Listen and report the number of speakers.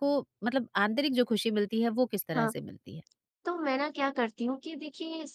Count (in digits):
2